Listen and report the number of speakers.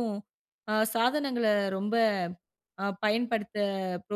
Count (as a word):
one